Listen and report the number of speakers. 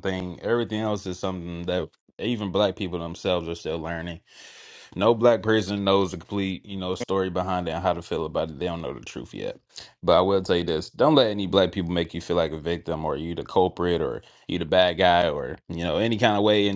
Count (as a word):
one